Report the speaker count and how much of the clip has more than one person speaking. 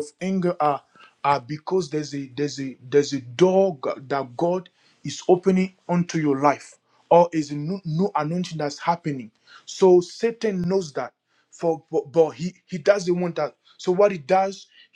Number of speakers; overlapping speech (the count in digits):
1, no overlap